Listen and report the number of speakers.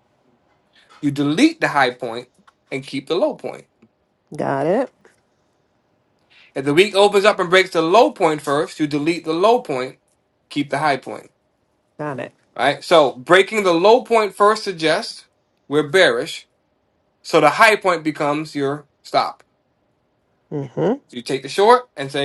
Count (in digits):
2